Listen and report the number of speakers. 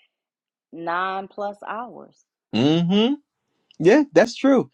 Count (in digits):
2